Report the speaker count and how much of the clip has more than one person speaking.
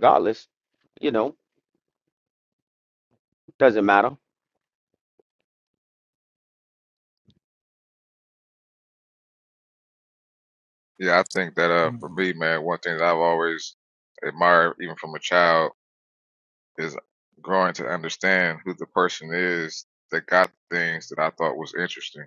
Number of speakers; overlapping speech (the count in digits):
2, no overlap